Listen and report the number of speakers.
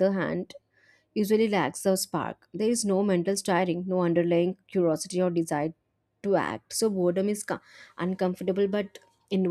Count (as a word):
one